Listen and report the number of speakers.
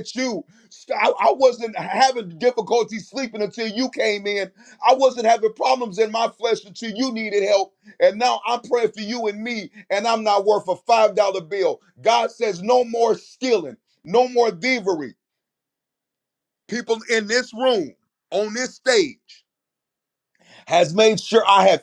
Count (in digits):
1